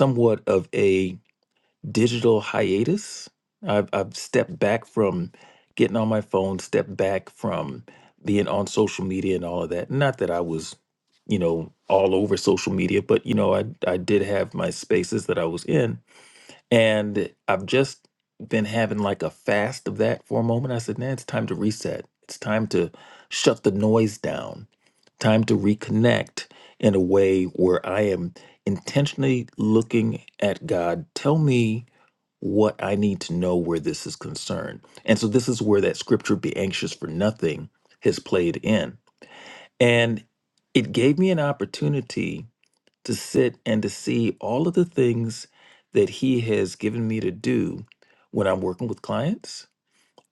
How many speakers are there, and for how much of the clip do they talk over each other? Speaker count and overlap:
one, no overlap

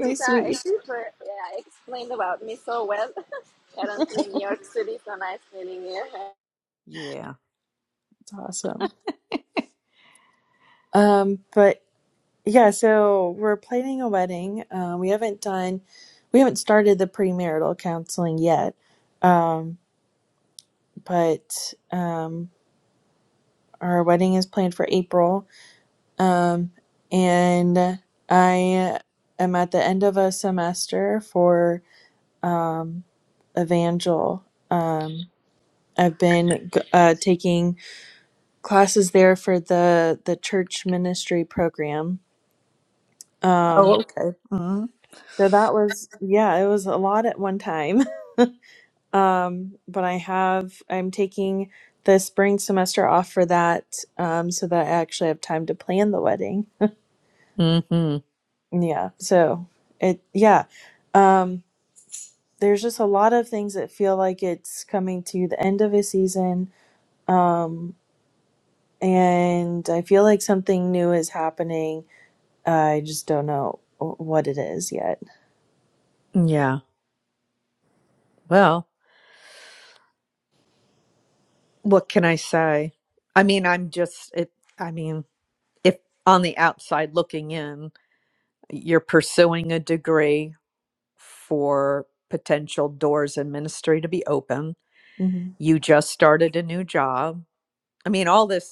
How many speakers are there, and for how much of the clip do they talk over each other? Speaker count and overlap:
three, about 1%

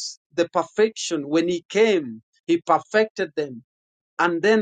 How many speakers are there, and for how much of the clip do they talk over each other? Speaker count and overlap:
one, no overlap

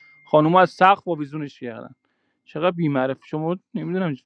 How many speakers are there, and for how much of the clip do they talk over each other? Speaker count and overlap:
one, no overlap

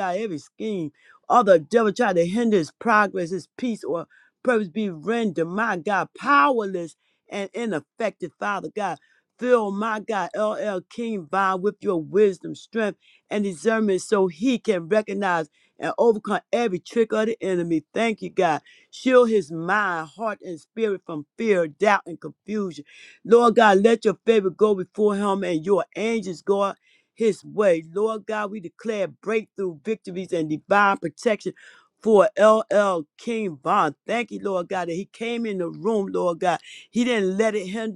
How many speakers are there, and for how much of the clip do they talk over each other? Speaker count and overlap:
one, no overlap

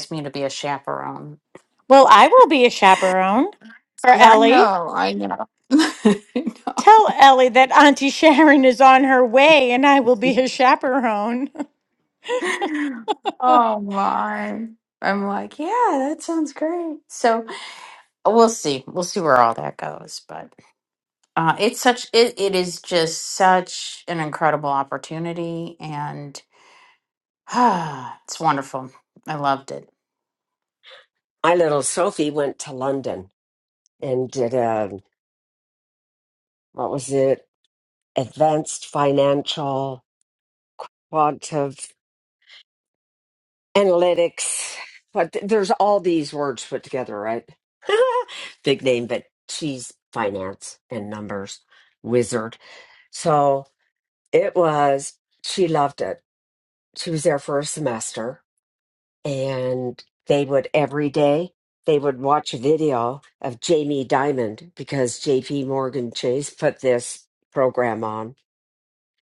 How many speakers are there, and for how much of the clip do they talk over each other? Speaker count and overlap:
three, about 1%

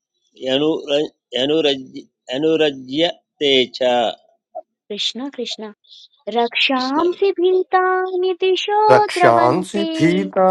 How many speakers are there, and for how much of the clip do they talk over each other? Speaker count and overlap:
three, about 14%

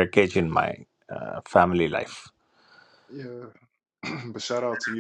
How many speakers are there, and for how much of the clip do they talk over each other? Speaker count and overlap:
two, no overlap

